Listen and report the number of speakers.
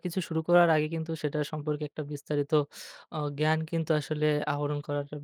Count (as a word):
one